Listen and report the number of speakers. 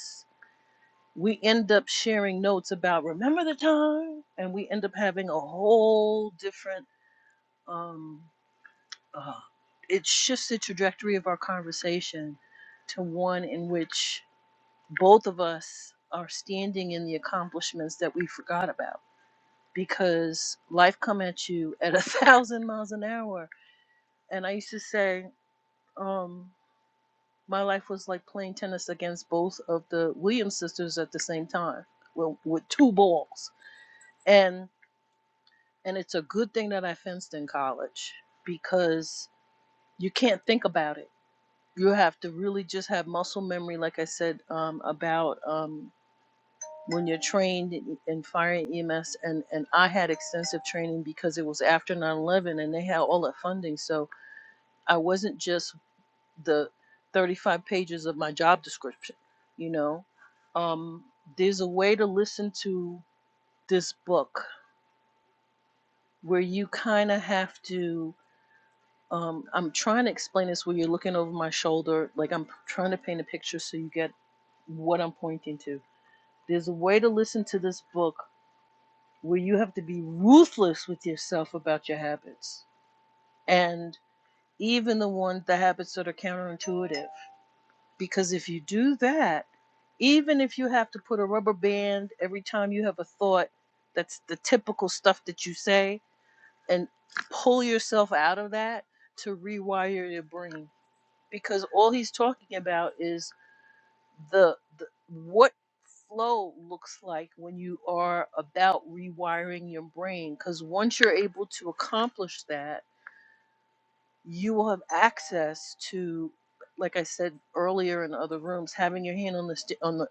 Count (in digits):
1